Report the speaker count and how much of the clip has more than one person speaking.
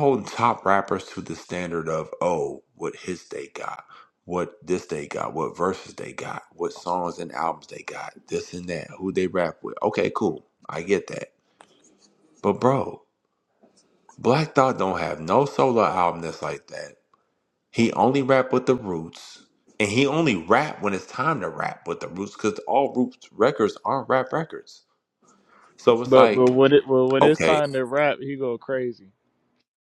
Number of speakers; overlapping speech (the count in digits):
2, about 3%